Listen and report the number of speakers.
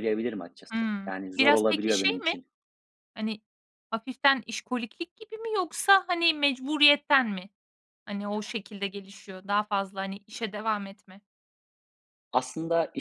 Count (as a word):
two